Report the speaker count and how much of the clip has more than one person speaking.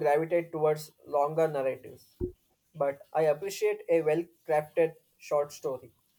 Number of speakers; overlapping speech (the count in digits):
1, no overlap